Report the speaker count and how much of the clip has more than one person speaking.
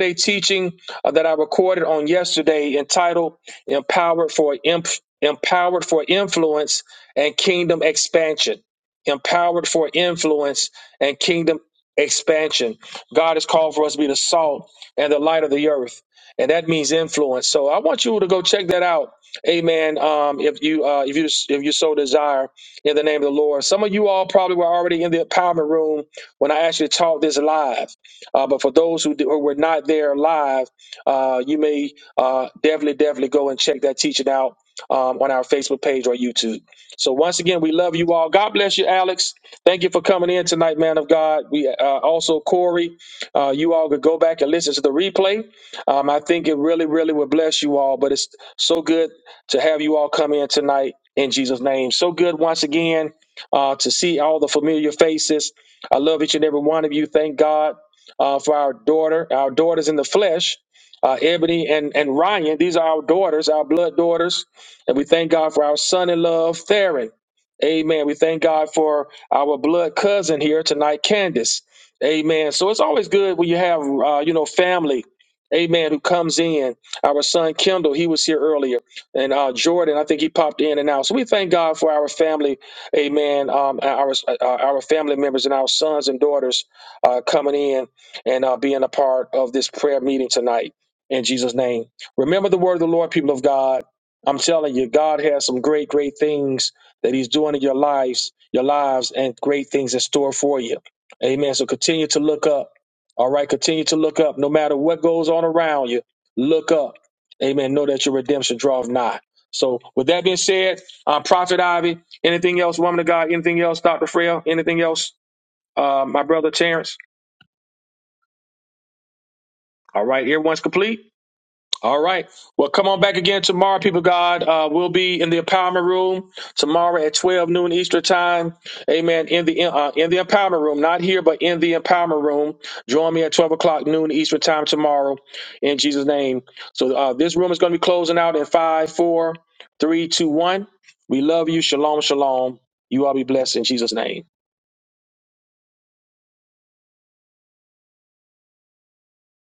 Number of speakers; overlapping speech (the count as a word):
one, no overlap